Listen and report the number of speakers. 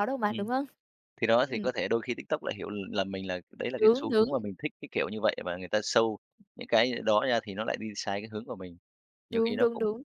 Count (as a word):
two